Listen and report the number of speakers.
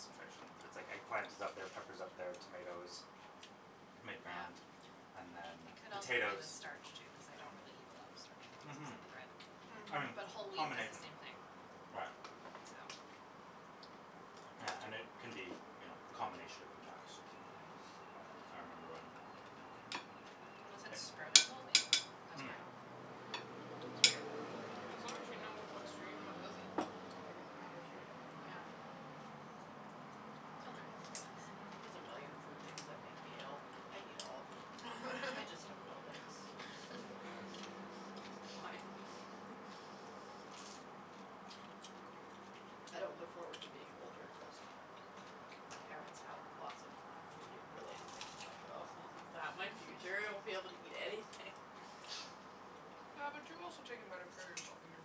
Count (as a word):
four